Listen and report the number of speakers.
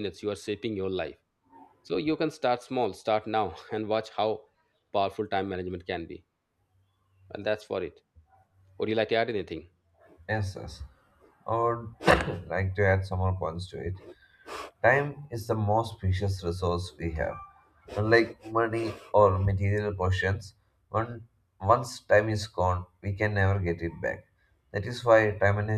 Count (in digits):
2